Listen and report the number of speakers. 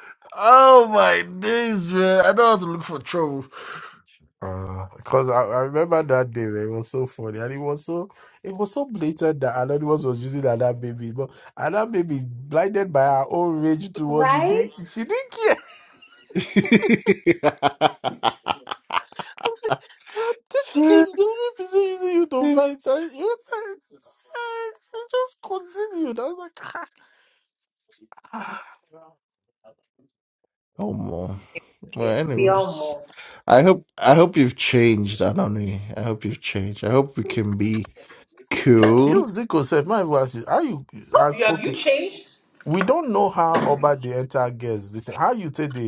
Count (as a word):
three